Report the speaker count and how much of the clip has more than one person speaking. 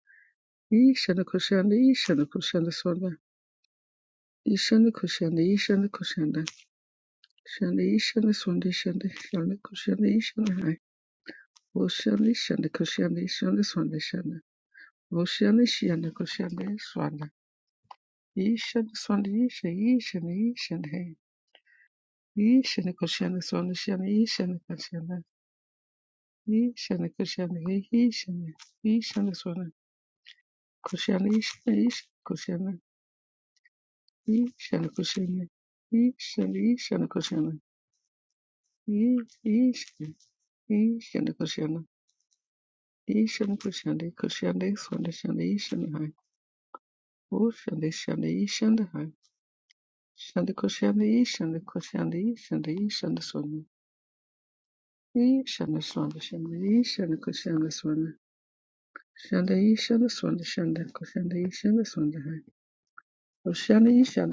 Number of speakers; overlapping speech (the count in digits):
1, no overlap